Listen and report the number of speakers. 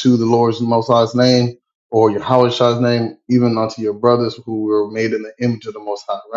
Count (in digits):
1